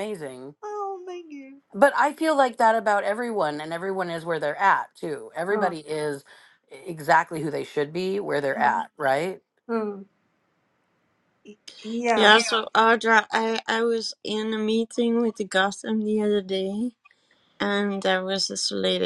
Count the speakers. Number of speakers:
three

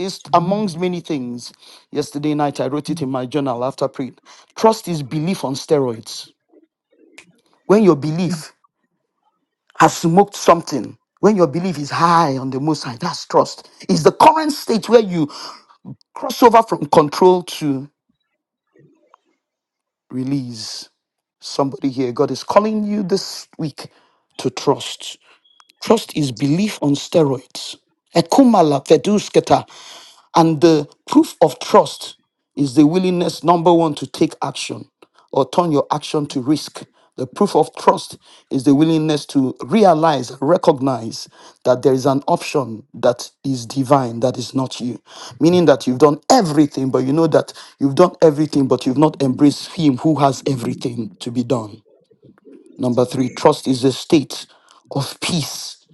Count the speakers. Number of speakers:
one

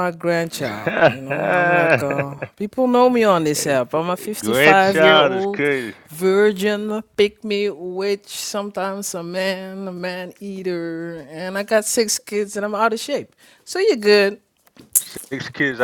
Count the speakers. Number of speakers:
two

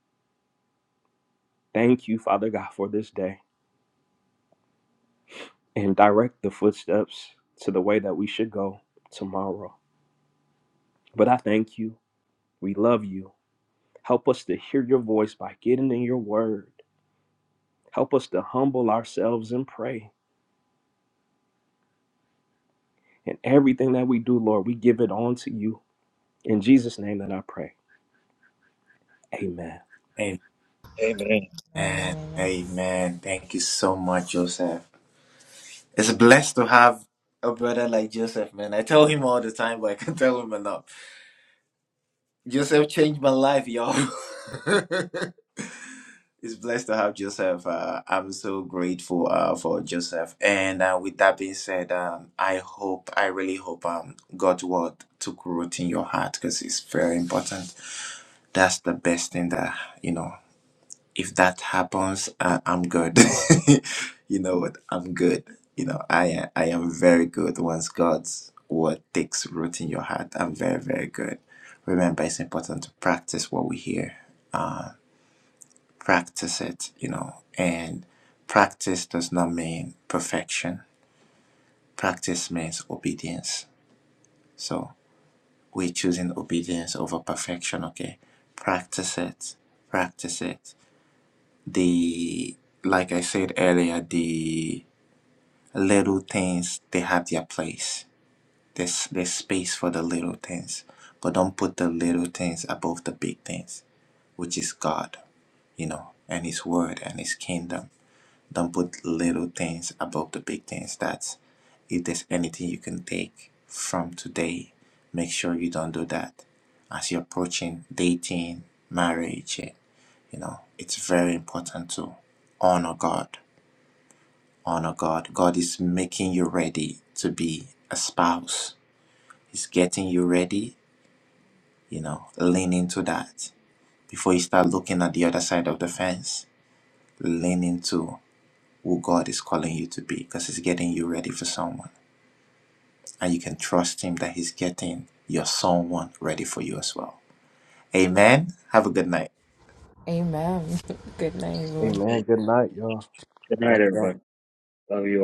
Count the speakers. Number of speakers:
four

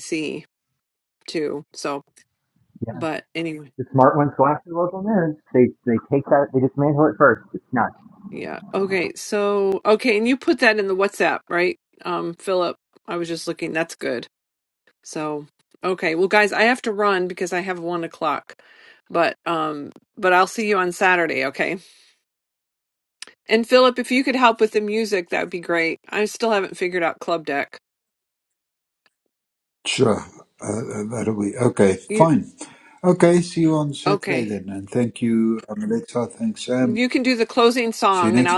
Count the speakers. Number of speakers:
three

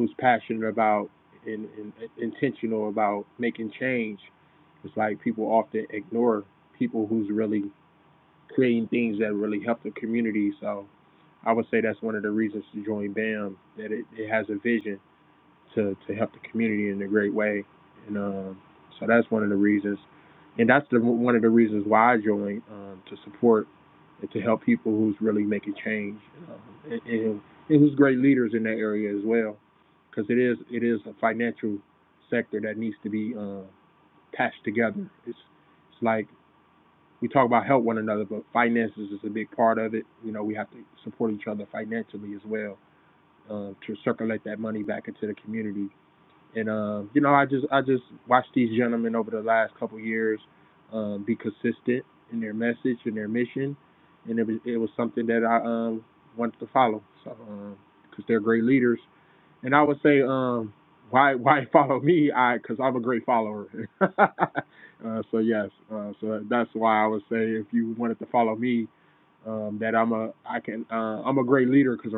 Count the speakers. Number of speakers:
one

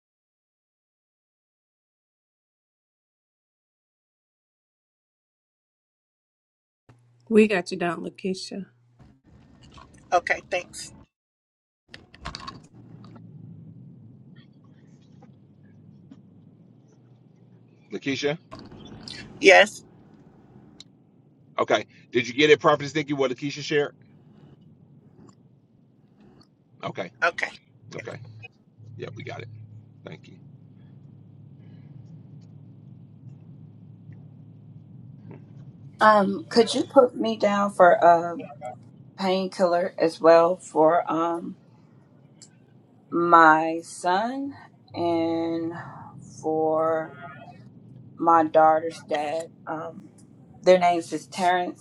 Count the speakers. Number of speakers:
four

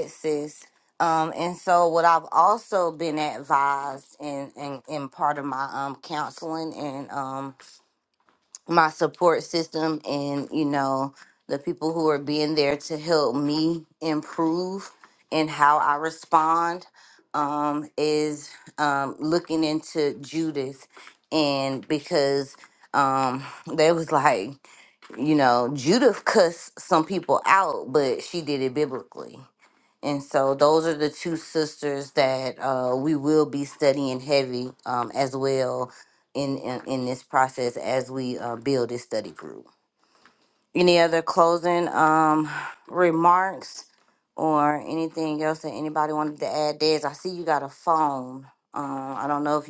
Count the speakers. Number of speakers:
one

